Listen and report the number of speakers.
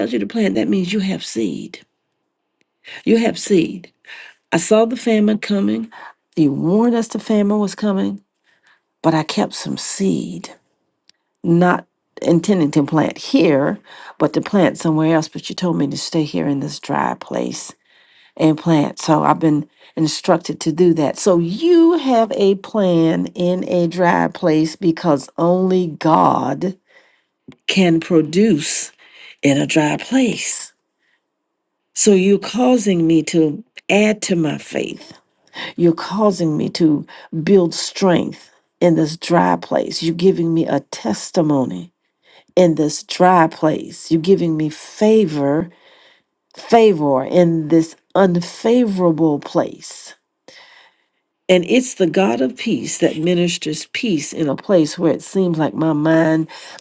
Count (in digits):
1